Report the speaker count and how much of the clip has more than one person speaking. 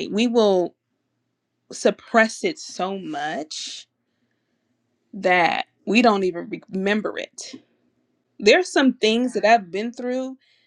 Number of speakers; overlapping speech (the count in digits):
1, no overlap